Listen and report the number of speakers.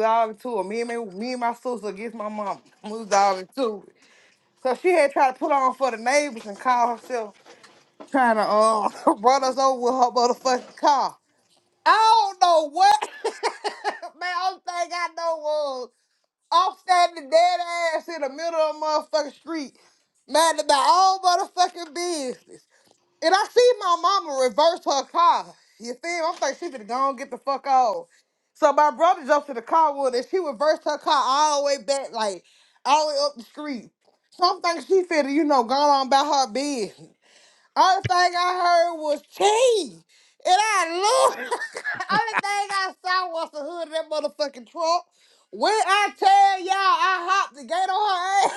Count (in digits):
1